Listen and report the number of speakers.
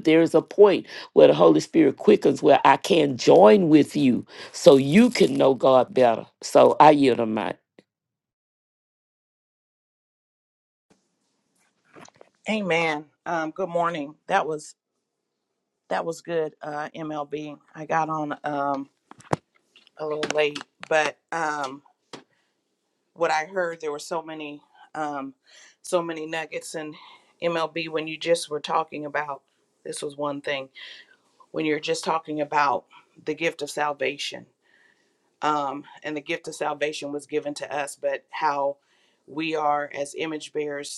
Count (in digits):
2